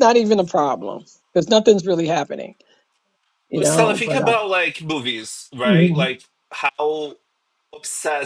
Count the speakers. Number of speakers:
two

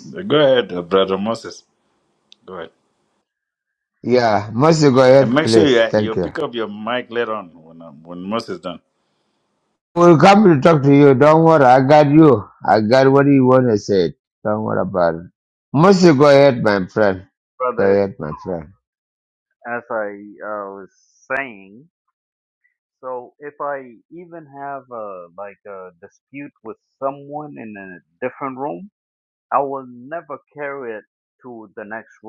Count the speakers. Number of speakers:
three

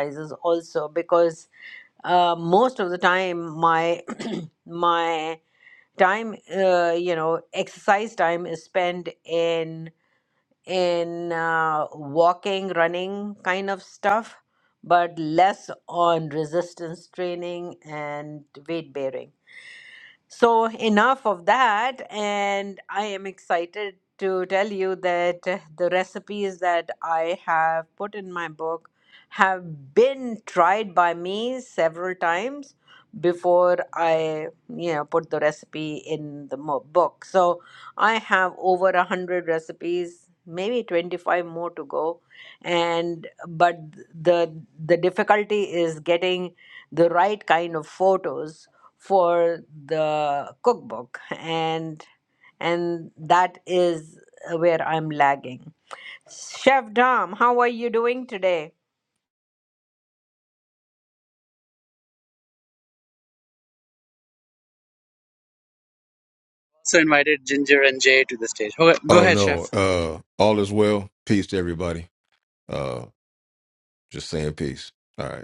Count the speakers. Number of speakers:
three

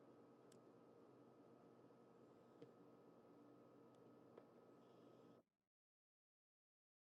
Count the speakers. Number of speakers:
zero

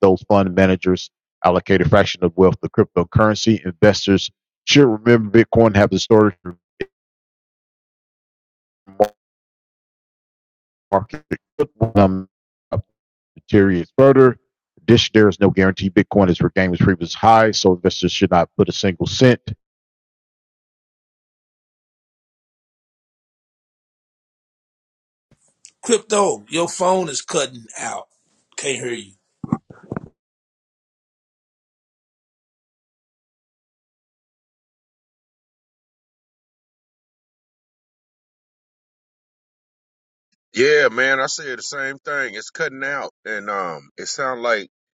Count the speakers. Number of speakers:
three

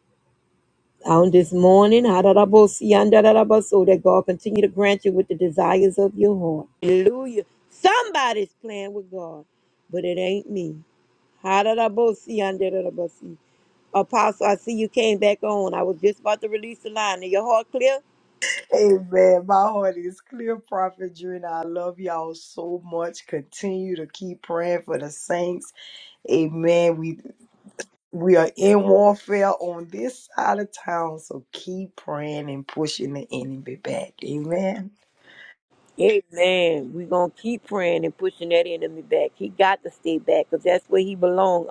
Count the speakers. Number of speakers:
two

